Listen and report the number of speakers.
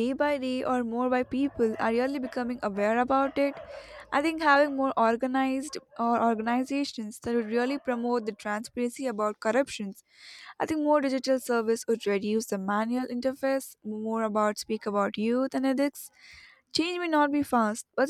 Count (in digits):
1